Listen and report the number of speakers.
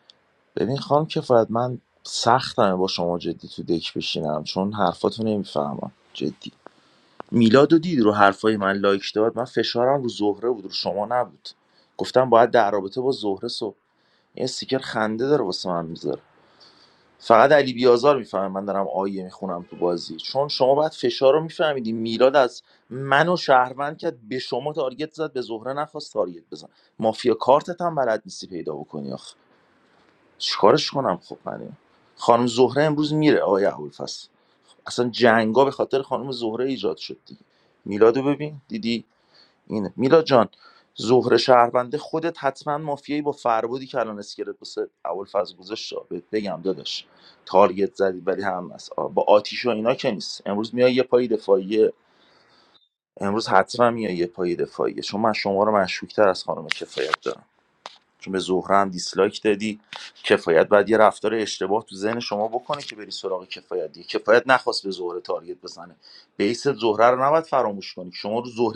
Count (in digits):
1